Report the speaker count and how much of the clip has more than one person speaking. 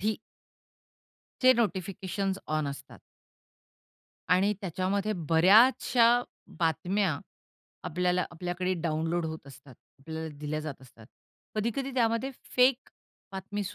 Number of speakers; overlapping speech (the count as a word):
one, no overlap